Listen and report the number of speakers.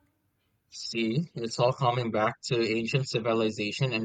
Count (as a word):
one